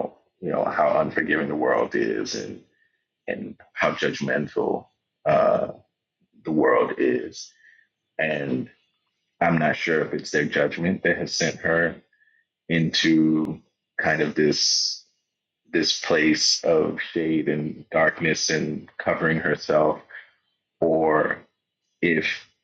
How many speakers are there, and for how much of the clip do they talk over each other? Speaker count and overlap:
1, no overlap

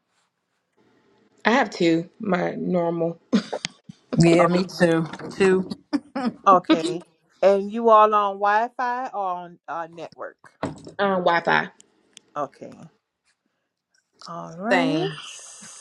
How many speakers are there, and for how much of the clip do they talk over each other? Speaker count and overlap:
3, about 6%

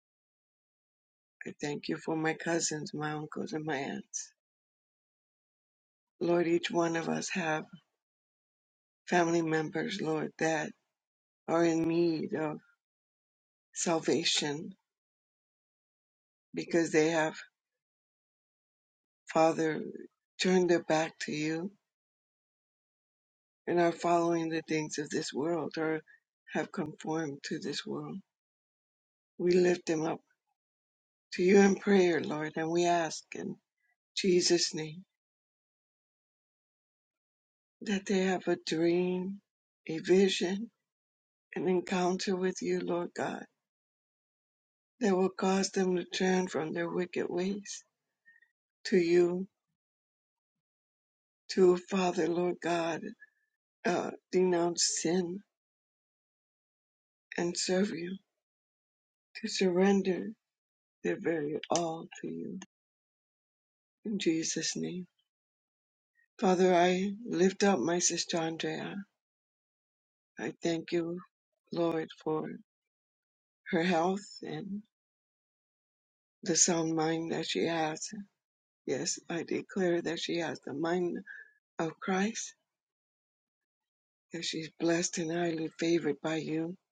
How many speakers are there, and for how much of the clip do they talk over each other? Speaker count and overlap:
1, no overlap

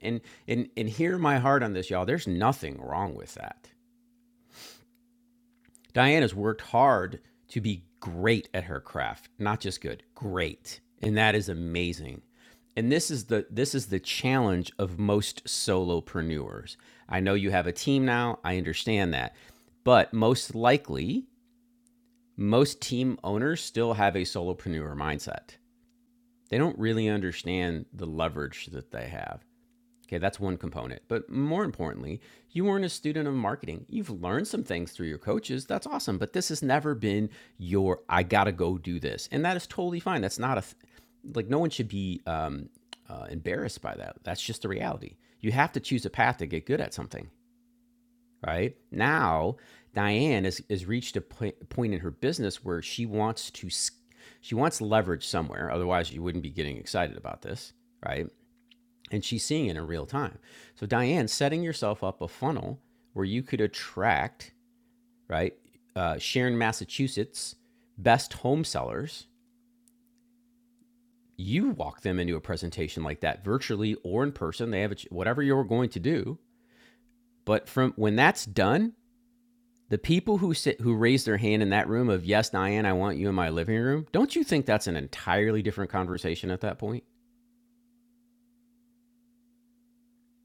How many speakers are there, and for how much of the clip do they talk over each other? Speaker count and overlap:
1, no overlap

